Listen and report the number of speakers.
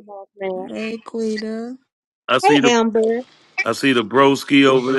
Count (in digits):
3